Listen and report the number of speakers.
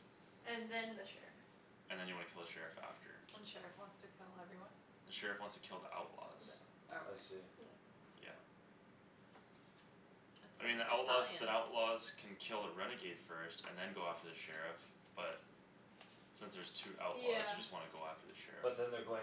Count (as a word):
four